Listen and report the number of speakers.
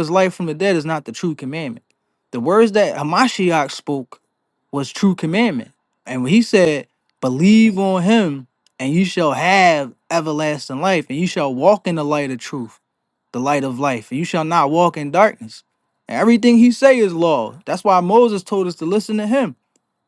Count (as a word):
one